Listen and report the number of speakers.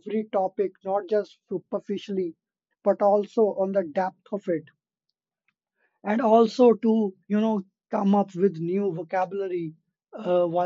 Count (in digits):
1